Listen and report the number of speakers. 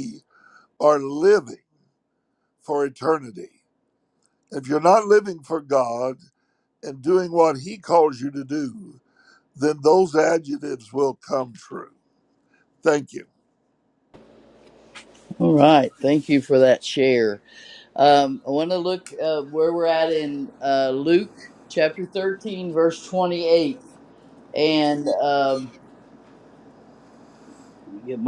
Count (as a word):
two